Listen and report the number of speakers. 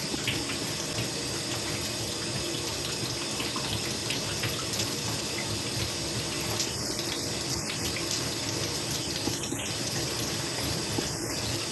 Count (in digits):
0